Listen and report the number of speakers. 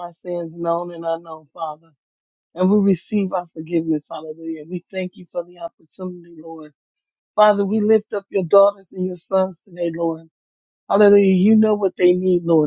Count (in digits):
1